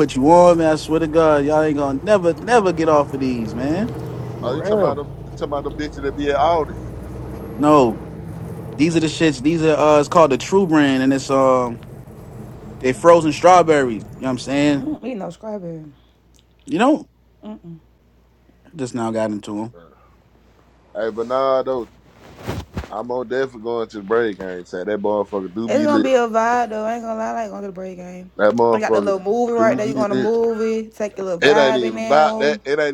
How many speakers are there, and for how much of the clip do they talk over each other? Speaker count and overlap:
3, about 10%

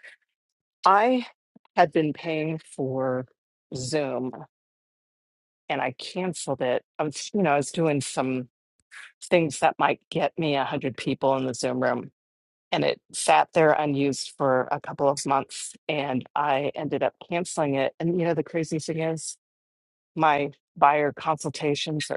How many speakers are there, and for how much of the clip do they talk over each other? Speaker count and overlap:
1, no overlap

